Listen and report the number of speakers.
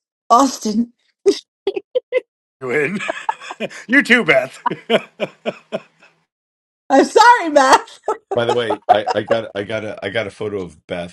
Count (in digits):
3